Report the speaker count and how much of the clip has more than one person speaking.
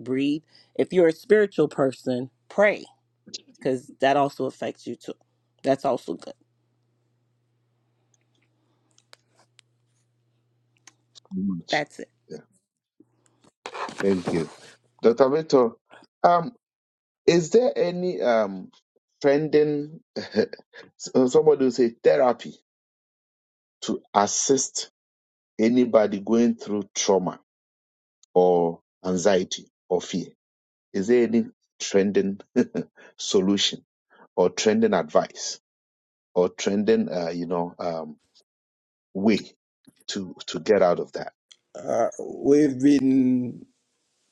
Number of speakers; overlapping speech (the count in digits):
3, under 1%